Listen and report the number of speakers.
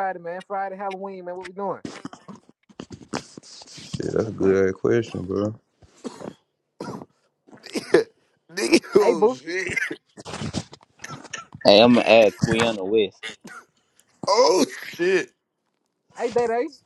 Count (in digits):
4